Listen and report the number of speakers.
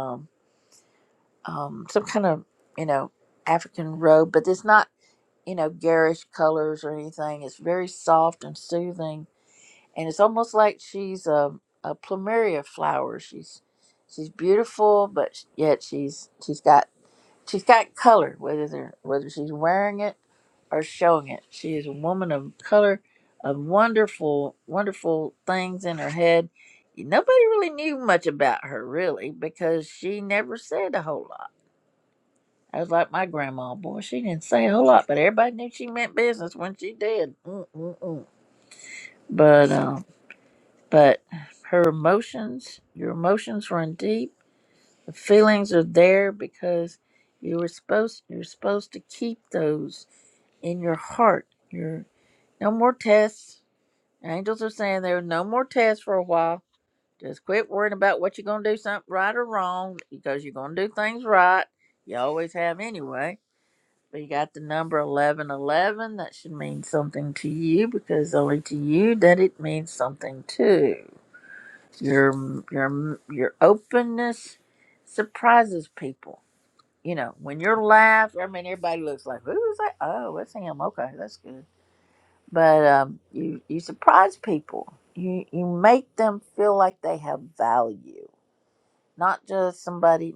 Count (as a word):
one